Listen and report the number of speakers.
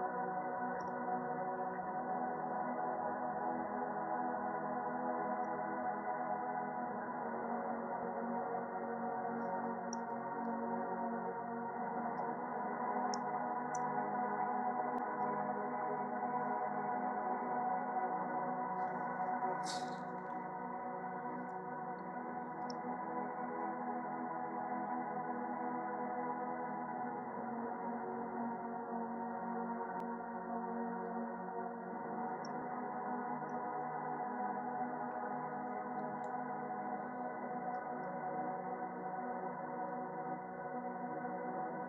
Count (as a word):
zero